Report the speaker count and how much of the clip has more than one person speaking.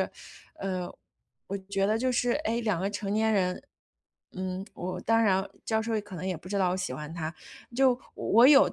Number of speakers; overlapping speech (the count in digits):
1, no overlap